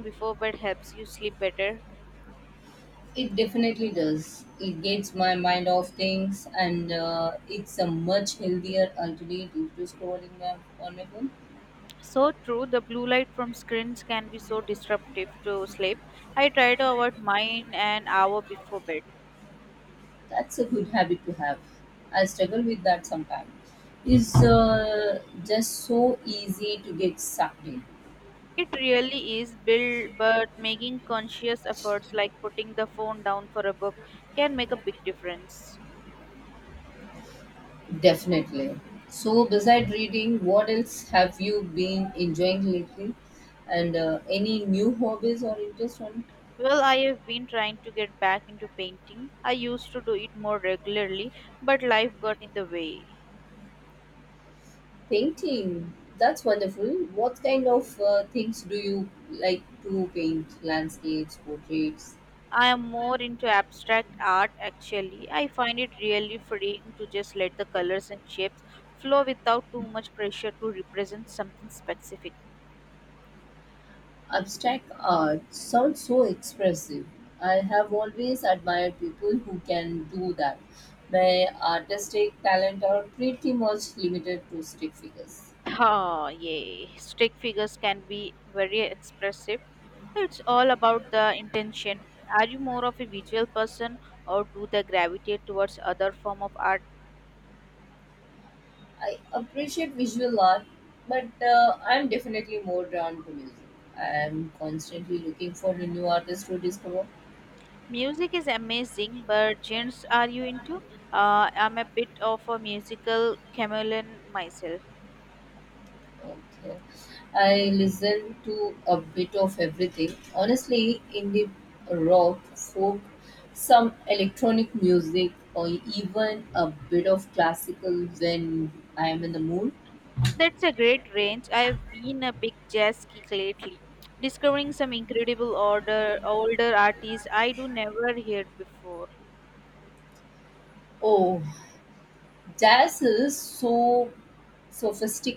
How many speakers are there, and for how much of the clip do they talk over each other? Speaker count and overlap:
two, no overlap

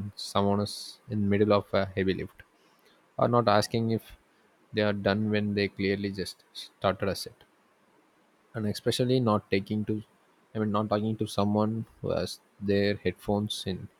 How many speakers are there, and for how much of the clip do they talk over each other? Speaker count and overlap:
one, no overlap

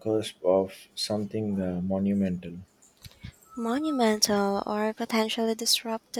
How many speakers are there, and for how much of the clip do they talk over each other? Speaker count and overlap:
two, no overlap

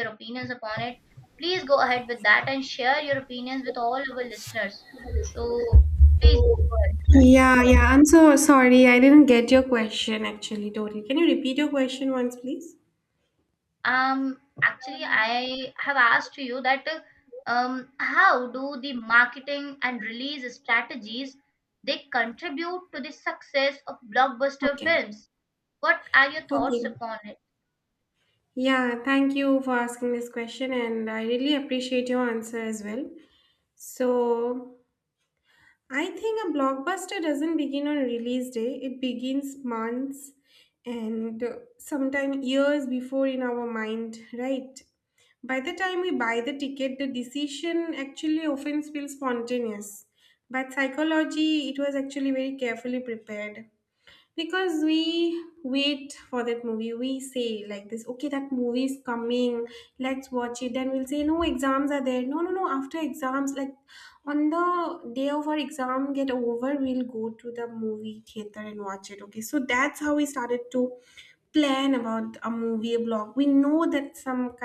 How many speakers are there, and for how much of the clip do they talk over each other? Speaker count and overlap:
two, about 1%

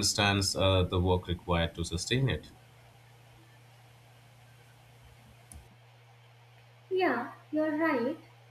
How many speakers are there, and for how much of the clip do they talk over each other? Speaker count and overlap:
two, no overlap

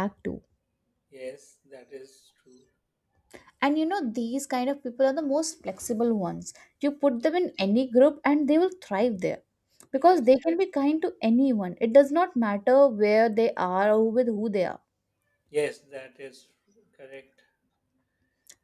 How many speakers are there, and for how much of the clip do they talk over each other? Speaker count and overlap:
two, about 1%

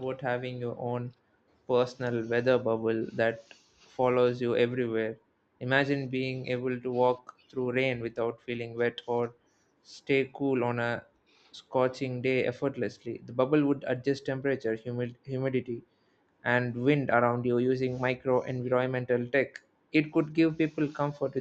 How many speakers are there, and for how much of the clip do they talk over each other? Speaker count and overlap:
one, no overlap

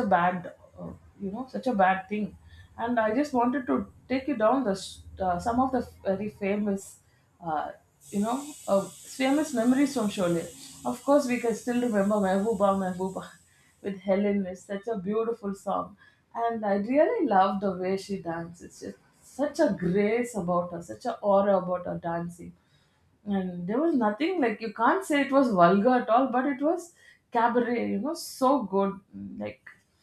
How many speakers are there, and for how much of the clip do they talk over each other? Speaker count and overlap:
one, no overlap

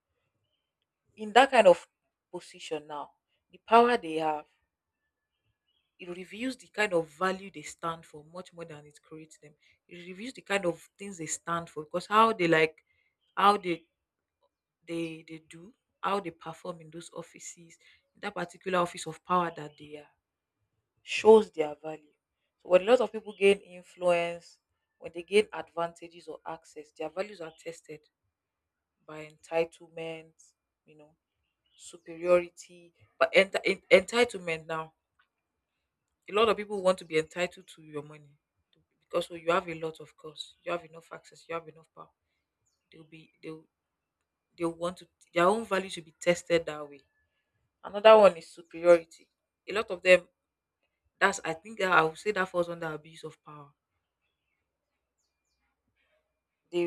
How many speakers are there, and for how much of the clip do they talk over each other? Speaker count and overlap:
one, no overlap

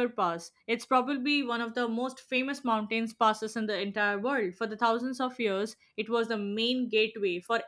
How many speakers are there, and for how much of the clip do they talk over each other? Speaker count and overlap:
one, no overlap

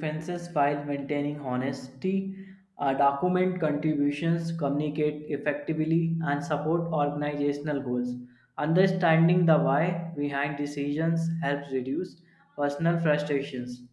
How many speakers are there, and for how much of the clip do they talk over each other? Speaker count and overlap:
one, no overlap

